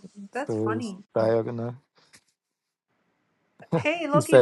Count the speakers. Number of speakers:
2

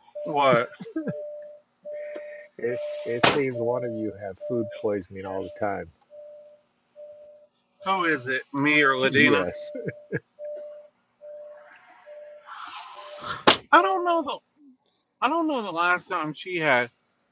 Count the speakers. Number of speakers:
2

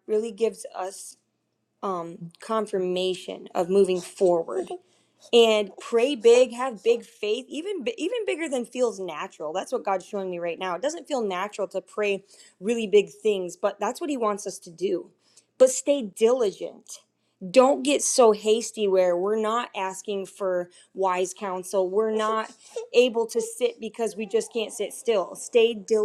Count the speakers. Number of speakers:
1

